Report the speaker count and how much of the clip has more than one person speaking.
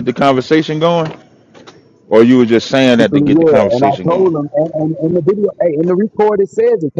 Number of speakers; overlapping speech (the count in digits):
2, about 21%